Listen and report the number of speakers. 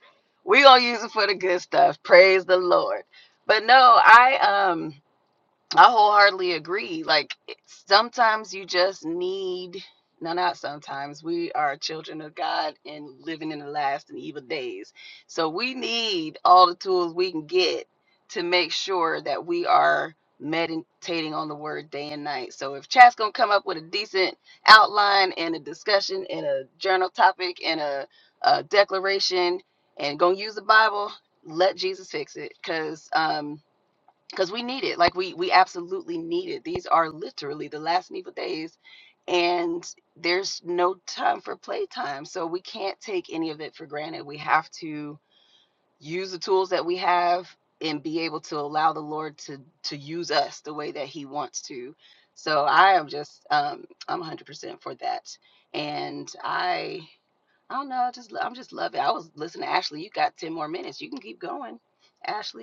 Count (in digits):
1